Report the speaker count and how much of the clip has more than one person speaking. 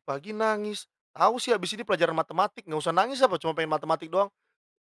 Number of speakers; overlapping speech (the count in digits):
1, no overlap